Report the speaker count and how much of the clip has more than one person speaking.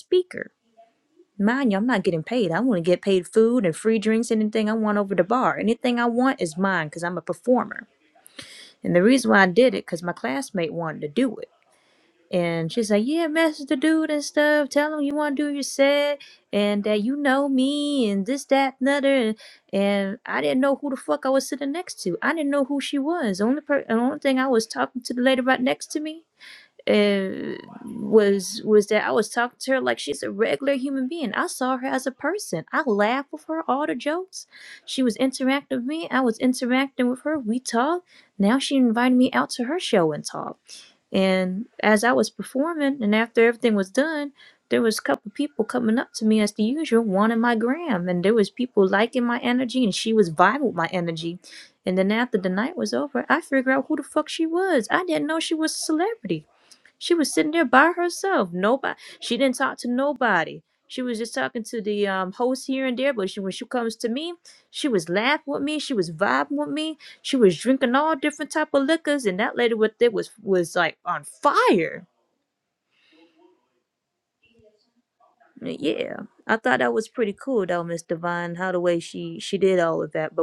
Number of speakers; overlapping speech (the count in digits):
1, no overlap